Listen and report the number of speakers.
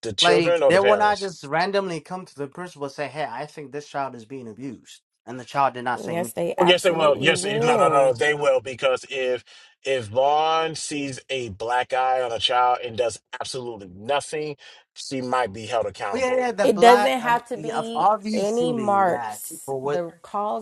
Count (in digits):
3